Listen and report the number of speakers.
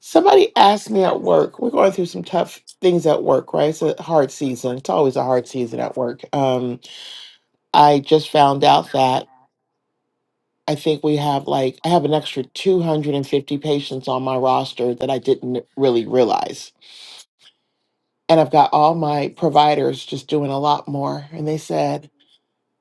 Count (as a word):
one